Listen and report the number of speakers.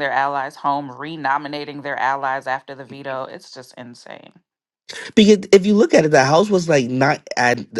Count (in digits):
2